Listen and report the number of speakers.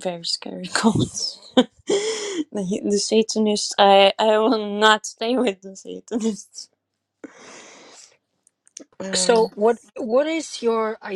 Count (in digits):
2